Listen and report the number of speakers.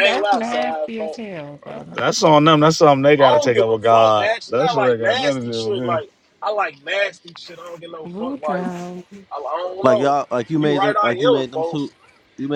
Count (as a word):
four